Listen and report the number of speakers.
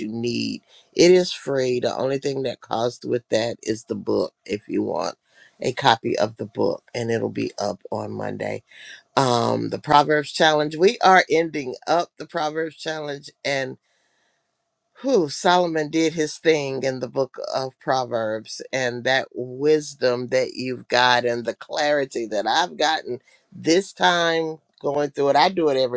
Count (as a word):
one